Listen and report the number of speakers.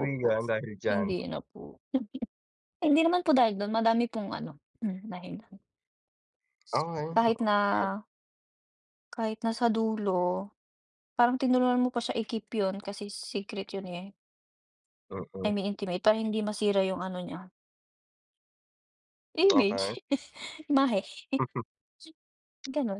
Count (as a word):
two